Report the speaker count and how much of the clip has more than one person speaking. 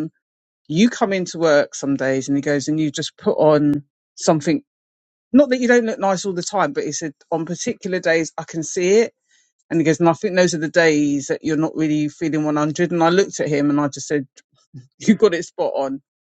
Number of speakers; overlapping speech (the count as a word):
one, no overlap